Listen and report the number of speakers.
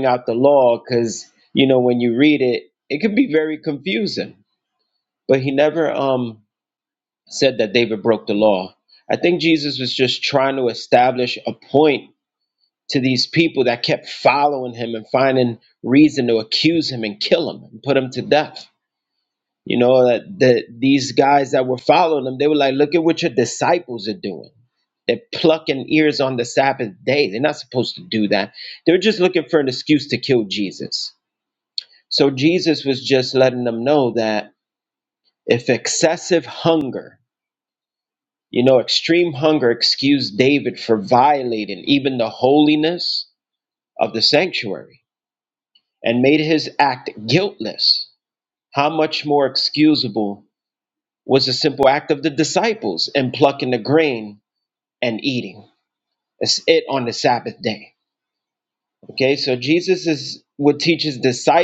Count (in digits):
1